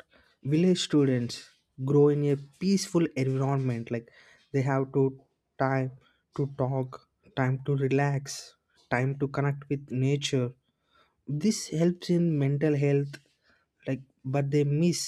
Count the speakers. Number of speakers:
one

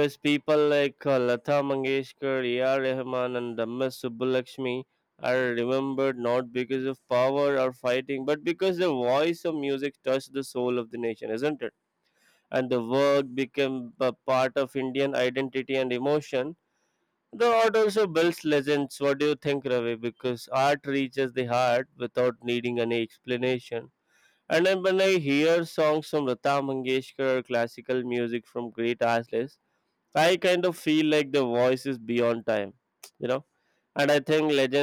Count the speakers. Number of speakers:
one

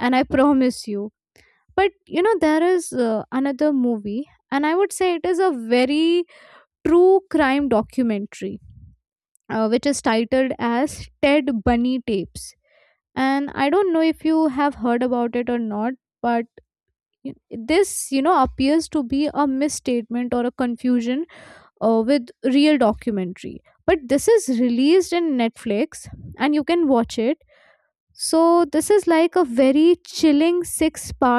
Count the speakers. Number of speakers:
one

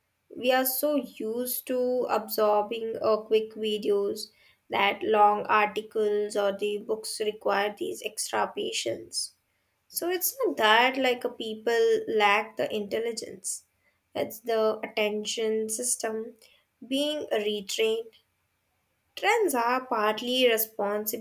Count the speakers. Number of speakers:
one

